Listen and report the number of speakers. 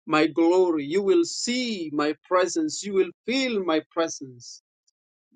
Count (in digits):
1